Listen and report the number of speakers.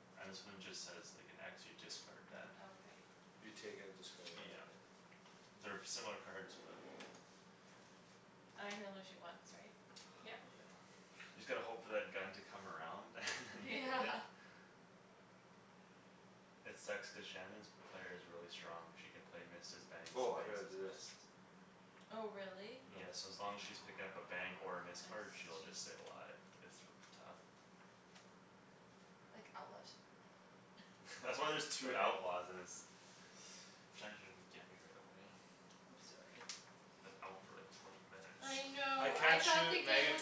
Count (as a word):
four